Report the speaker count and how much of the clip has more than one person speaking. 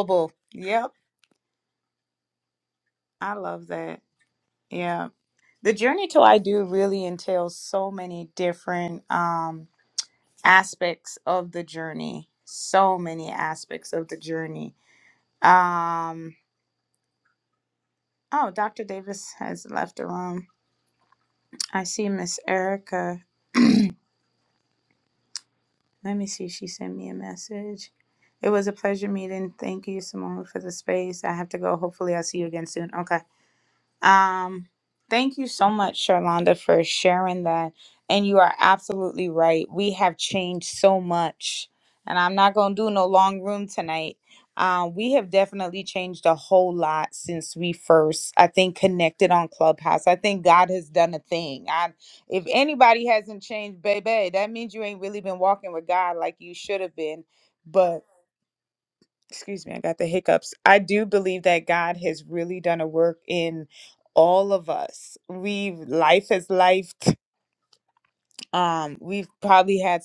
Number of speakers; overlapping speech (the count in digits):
1, no overlap